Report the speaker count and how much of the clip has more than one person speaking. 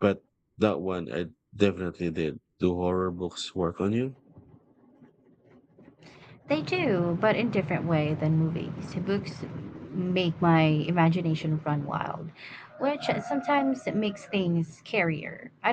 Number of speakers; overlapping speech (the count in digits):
2, no overlap